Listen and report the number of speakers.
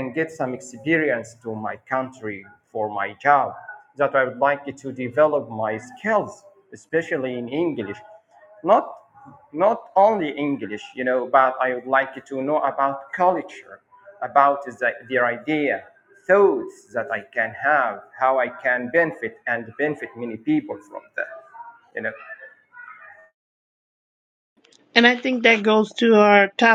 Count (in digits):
2